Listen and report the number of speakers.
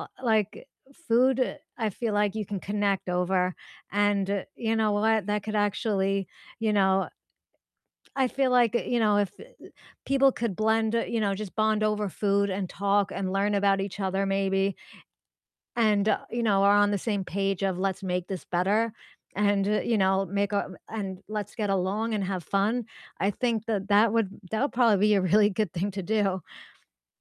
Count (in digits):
1